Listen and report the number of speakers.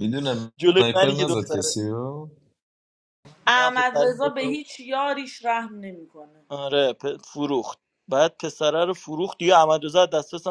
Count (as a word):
three